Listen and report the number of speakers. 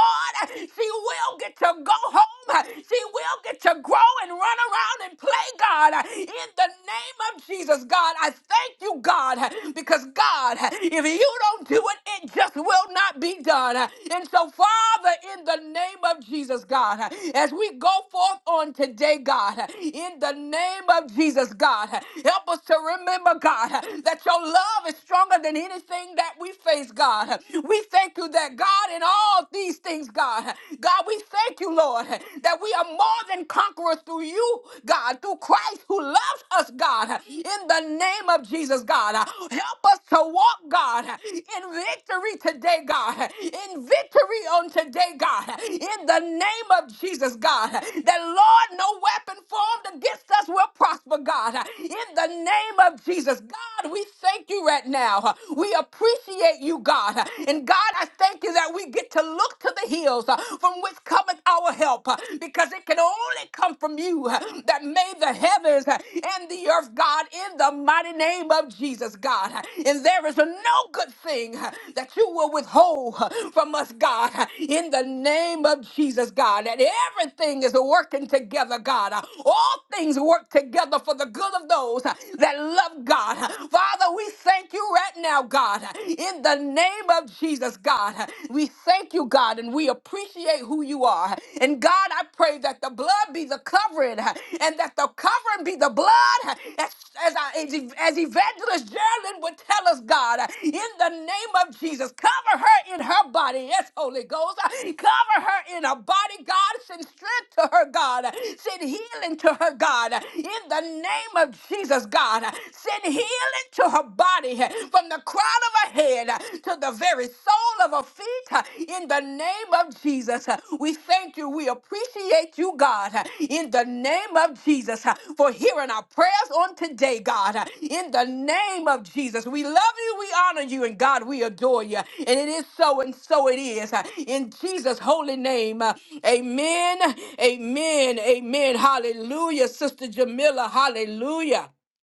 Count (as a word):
one